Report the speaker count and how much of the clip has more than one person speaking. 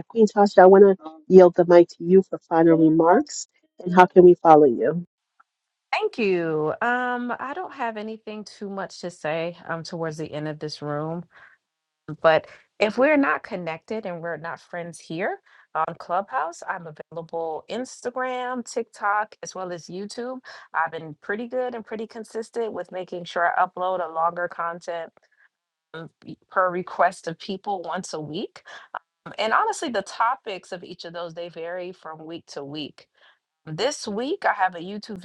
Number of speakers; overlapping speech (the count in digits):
2, no overlap